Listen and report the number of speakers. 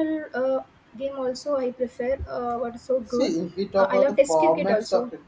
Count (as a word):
two